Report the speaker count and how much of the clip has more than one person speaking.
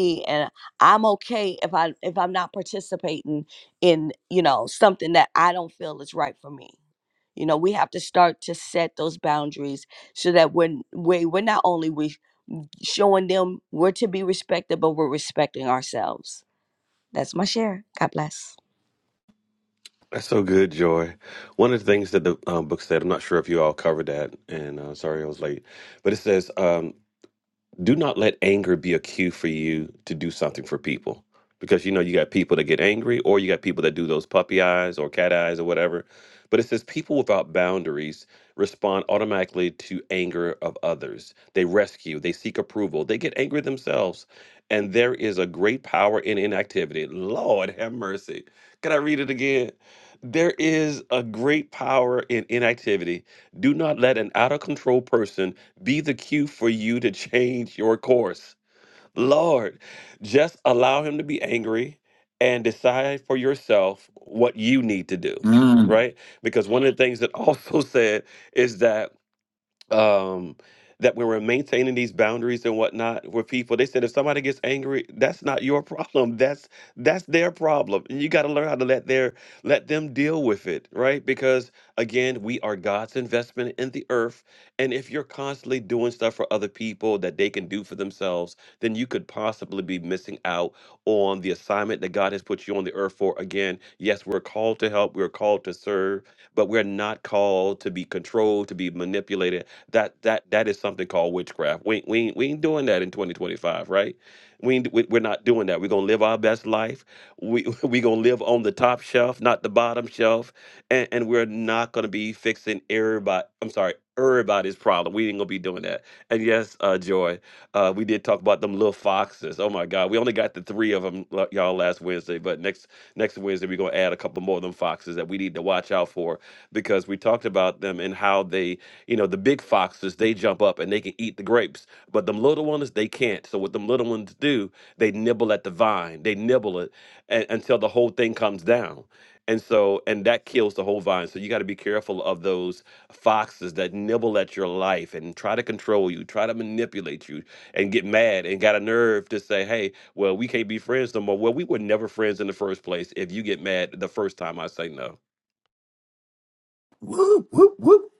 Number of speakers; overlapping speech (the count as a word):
three, under 1%